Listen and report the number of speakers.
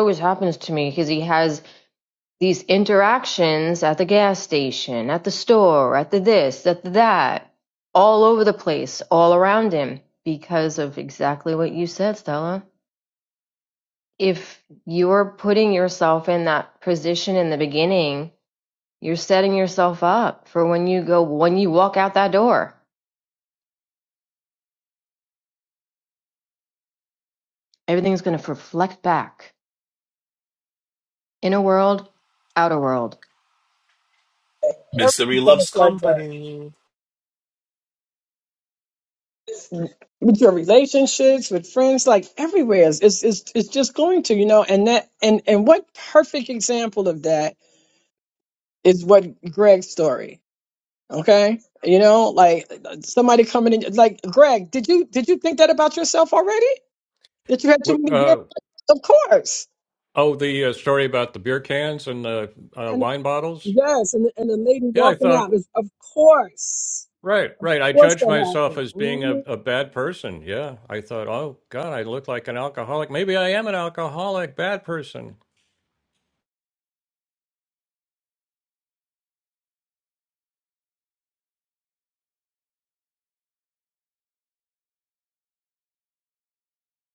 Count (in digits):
4